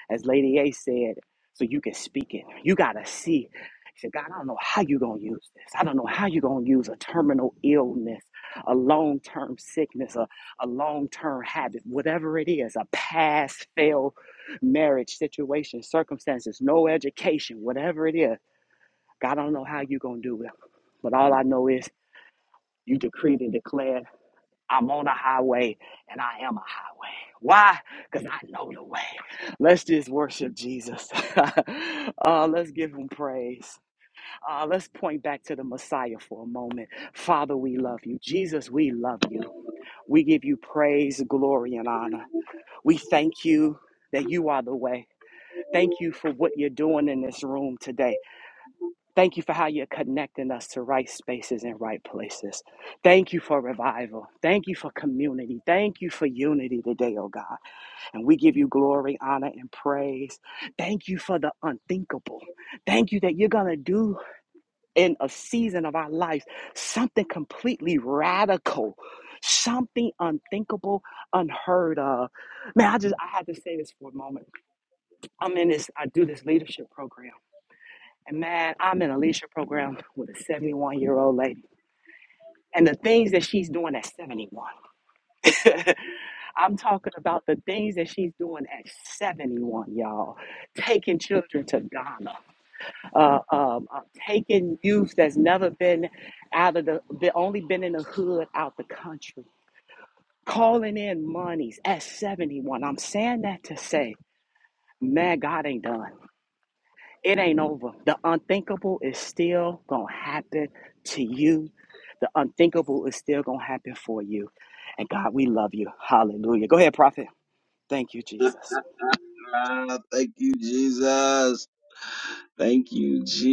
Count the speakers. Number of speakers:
2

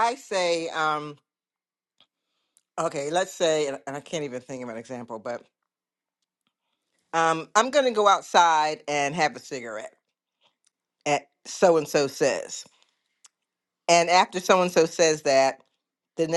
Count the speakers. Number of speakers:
1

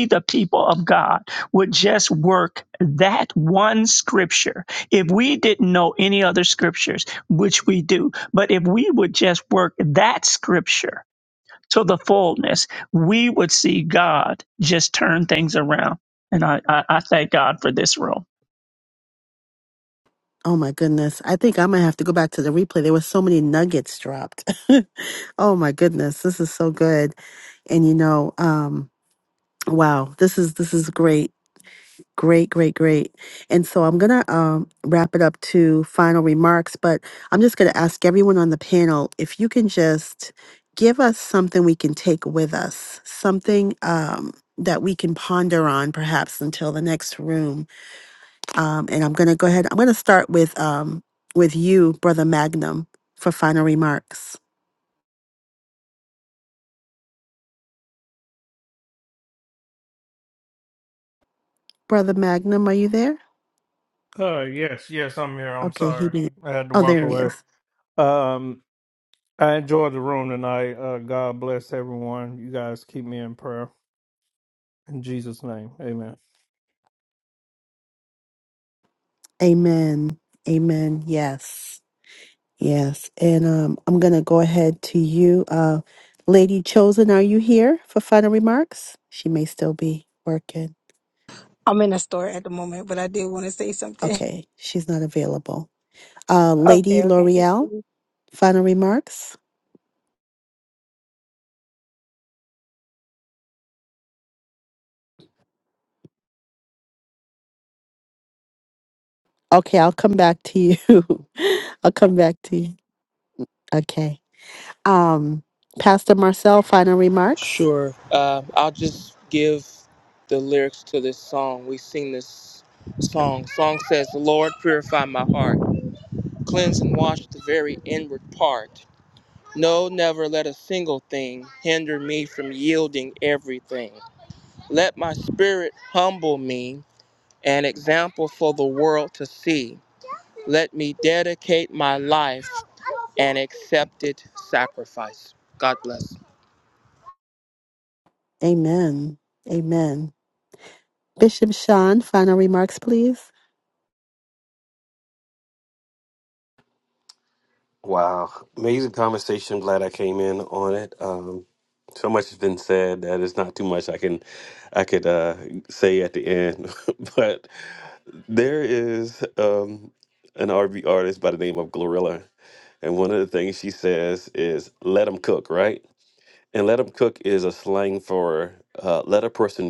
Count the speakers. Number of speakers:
6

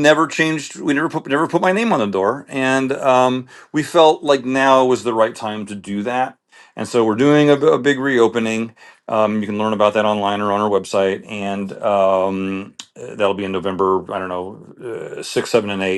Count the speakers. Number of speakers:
1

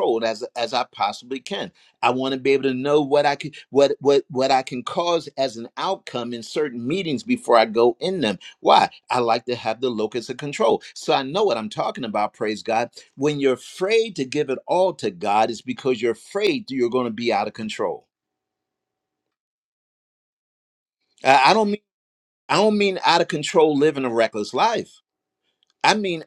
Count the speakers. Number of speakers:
1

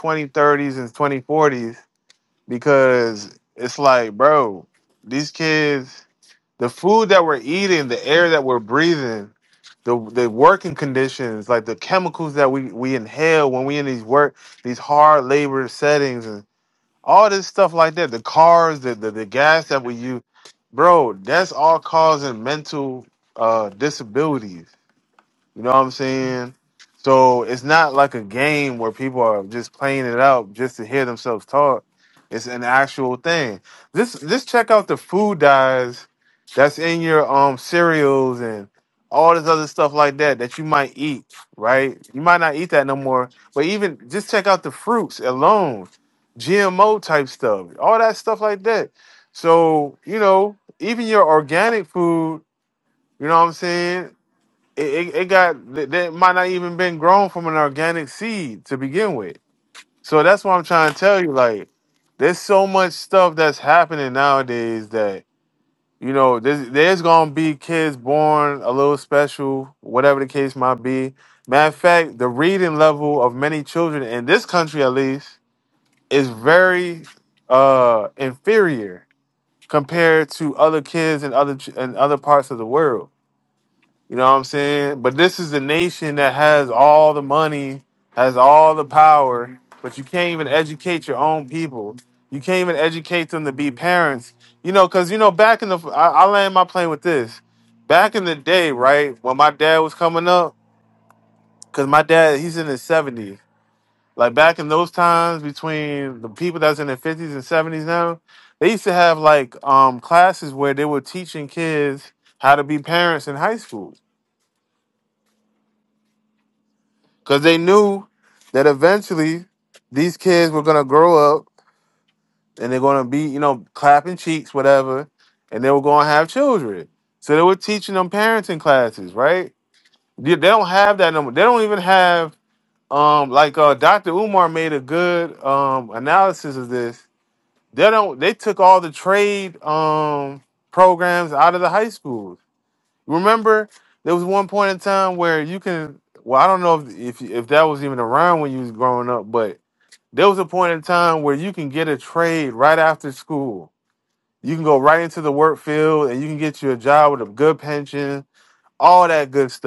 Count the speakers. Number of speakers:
1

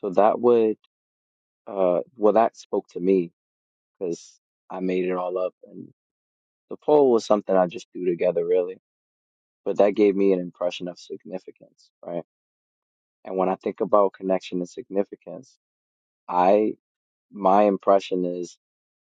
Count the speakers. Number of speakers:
1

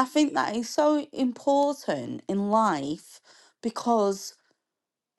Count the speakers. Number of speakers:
1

